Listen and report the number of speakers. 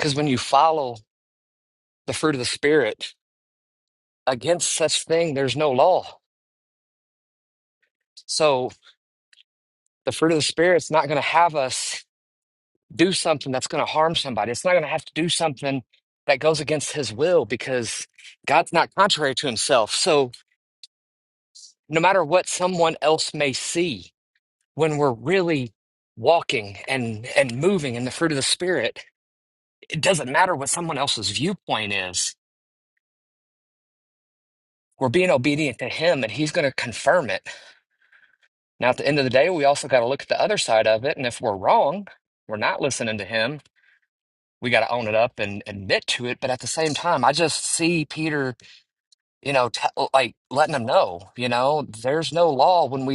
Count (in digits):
1